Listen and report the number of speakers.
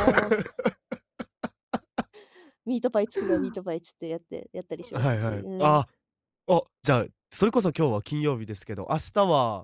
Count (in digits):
2